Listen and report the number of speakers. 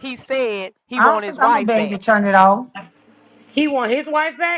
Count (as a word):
three